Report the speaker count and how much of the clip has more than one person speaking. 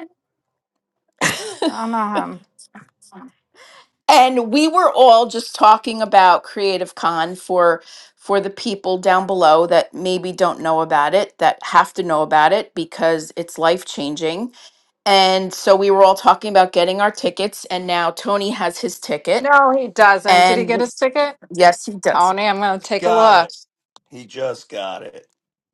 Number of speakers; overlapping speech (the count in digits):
3, about 4%